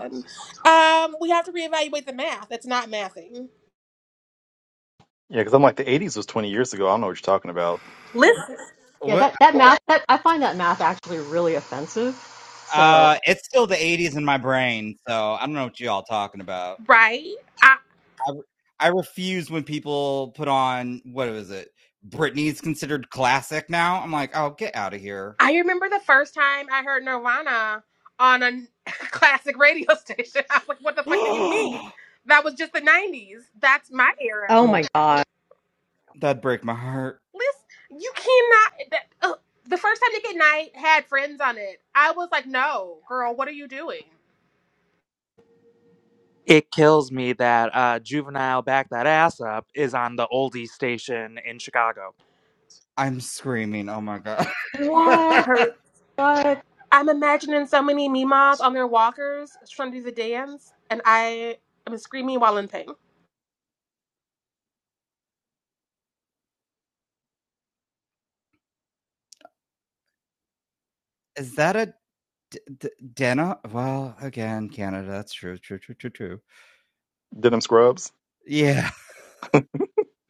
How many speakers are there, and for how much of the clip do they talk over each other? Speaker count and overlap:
five, about 3%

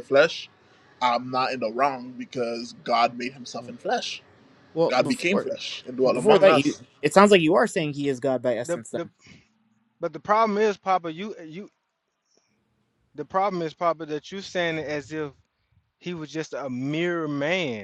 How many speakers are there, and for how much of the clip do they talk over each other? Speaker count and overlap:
three, about 9%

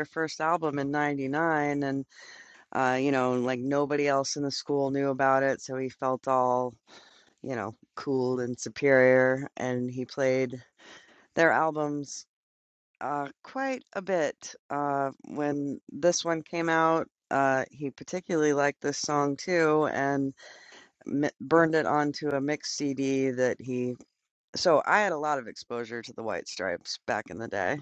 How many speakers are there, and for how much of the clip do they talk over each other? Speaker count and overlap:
one, no overlap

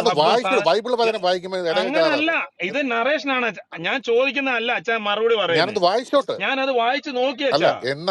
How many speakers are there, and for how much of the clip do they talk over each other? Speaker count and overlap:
two, about 23%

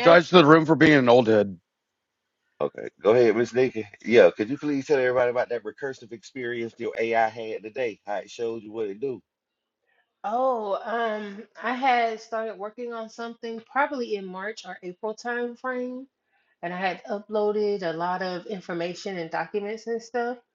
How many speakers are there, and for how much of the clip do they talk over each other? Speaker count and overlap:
three, about 1%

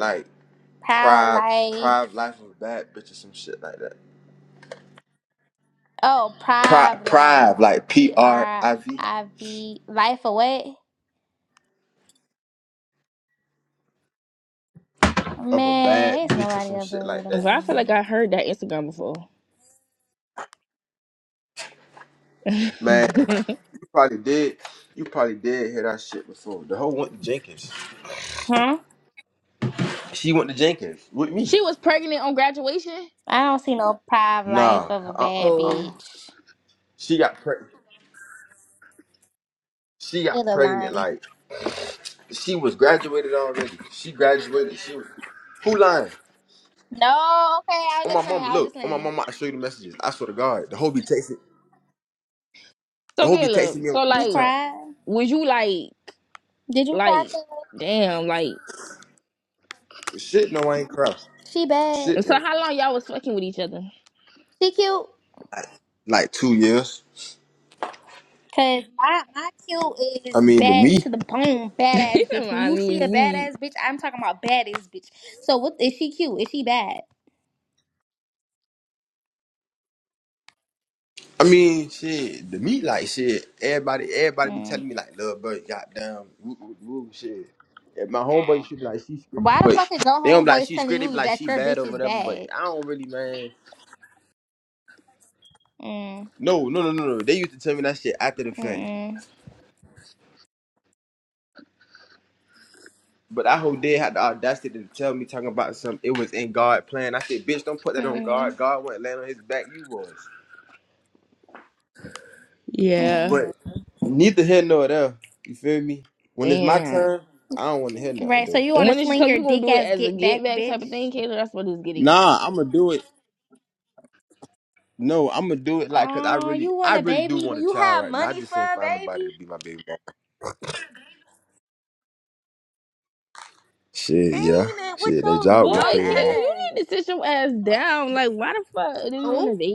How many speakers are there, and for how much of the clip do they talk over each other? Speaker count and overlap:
three, about 19%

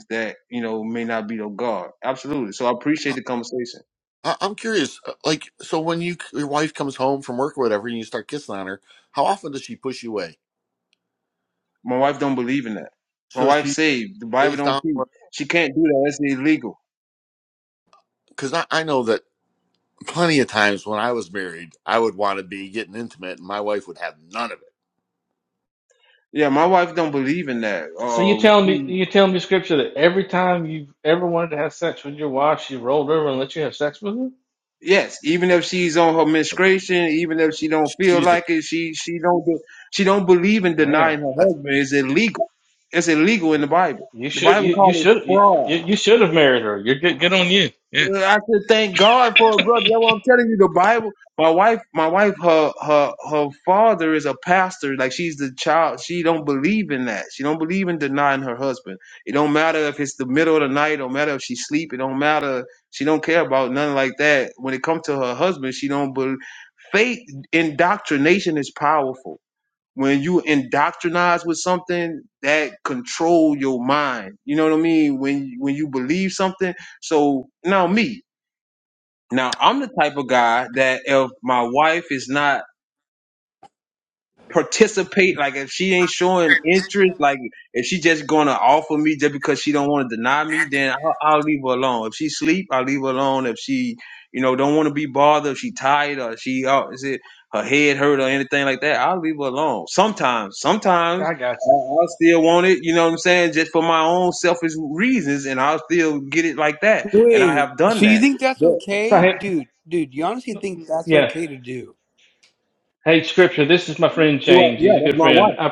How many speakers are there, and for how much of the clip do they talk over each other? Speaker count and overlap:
four, about 7%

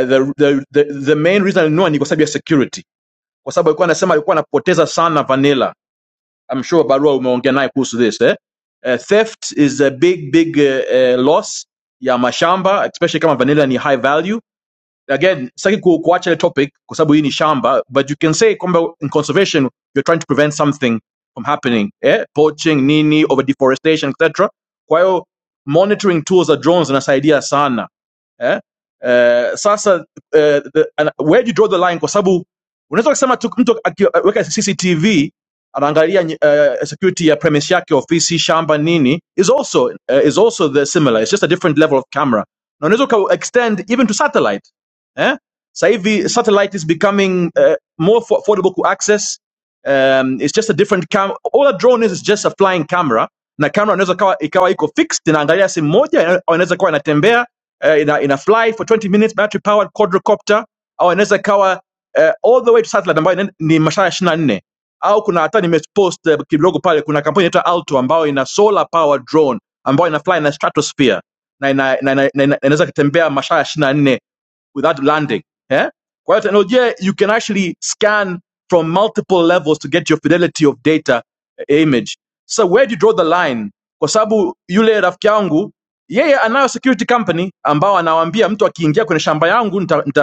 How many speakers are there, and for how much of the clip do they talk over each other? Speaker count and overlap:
one, no overlap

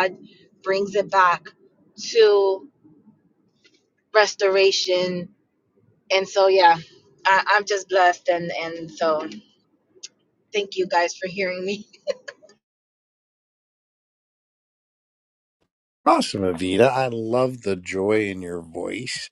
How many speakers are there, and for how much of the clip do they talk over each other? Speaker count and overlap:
two, no overlap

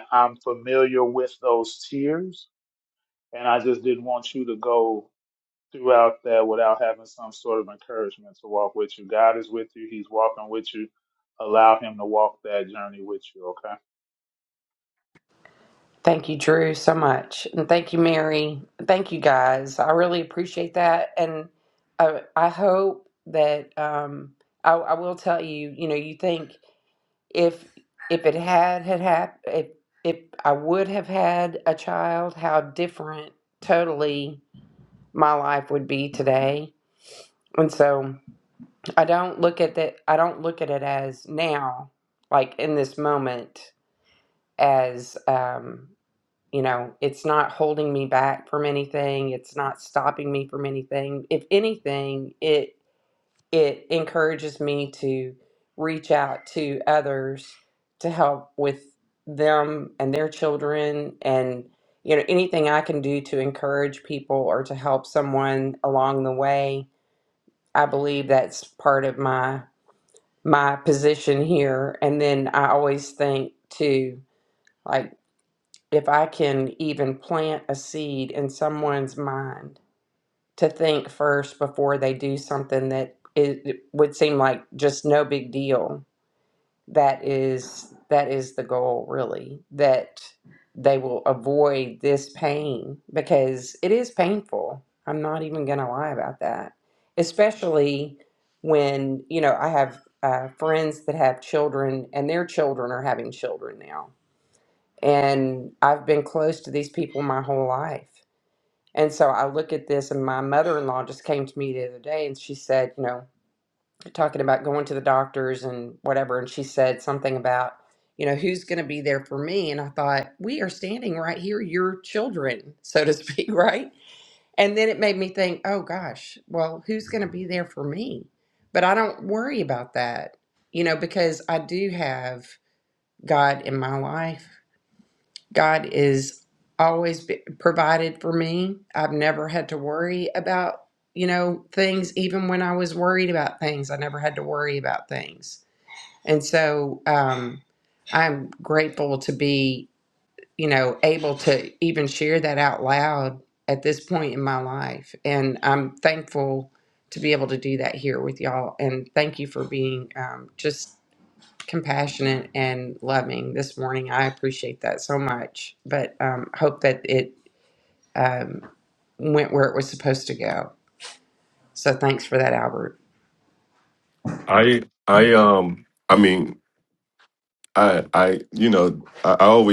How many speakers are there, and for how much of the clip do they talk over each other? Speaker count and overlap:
three, no overlap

